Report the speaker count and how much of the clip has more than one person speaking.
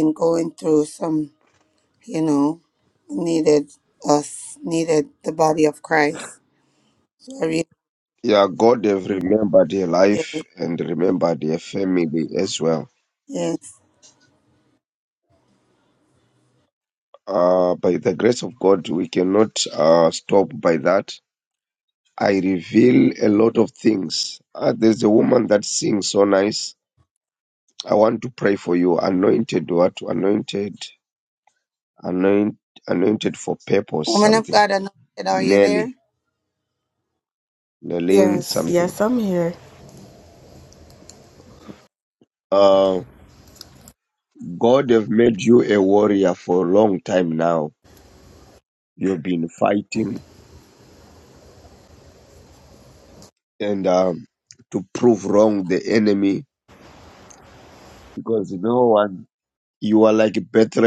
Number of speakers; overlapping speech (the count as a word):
three, about 3%